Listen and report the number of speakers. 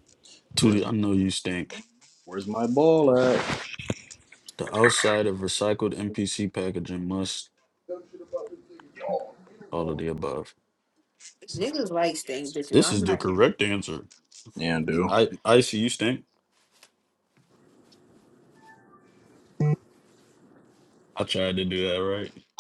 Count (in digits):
3